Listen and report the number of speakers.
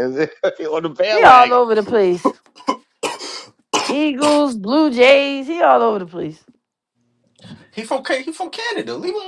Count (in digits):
3